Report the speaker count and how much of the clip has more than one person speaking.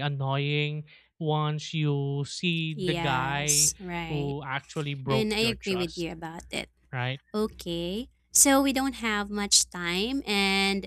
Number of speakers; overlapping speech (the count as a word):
two, about 19%